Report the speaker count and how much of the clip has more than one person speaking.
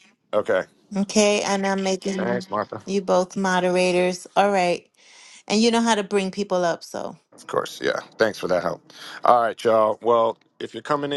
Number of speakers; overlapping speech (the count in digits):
2, about 2%